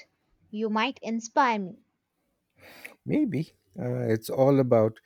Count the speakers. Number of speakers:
two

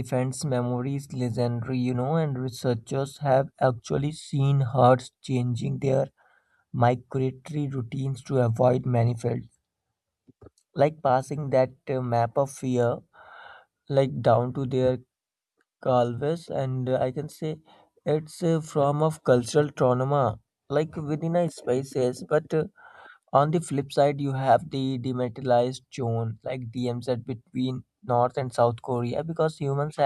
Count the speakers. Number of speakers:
one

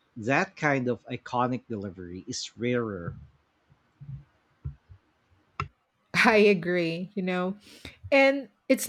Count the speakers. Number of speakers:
two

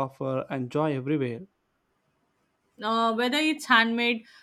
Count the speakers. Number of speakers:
two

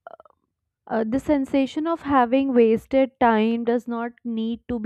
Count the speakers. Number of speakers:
one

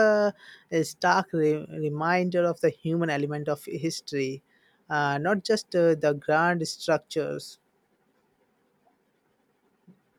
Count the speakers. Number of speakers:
one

